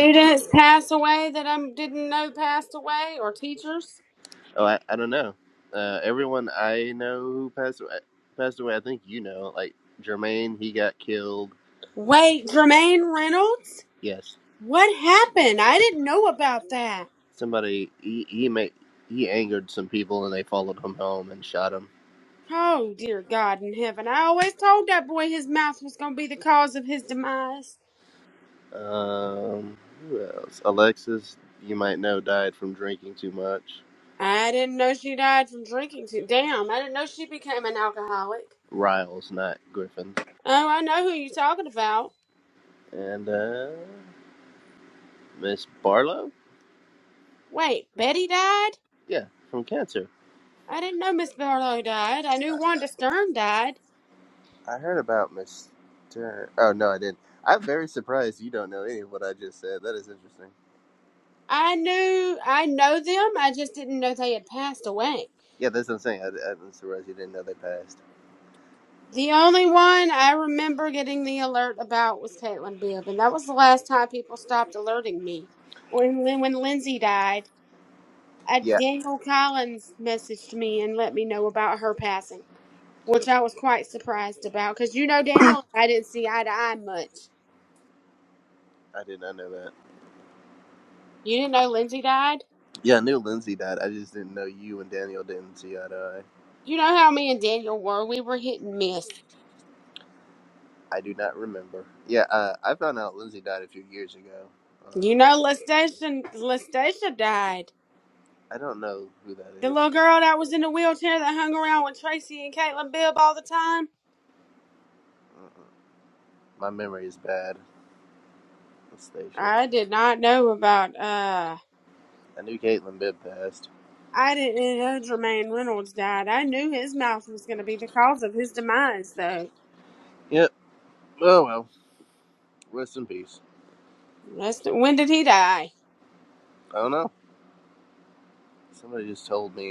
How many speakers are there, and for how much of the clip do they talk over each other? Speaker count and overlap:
2, about 1%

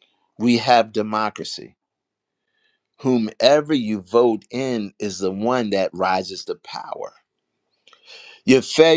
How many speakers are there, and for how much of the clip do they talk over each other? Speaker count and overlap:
1, no overlap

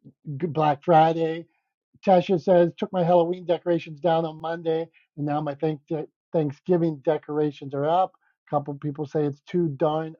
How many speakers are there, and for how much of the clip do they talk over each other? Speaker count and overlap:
1, no overlap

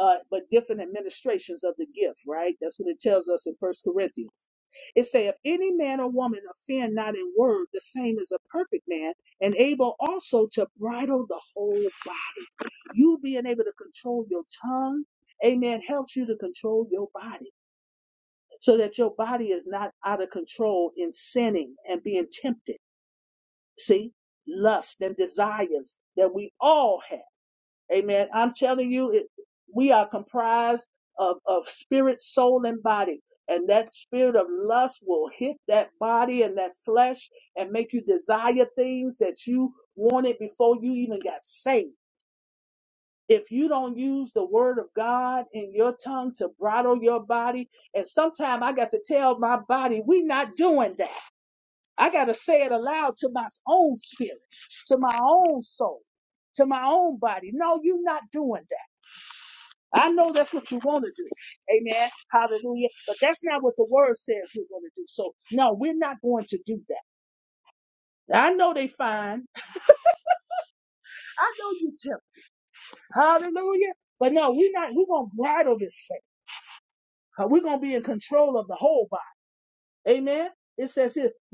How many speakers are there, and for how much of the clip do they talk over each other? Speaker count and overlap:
1, no overlap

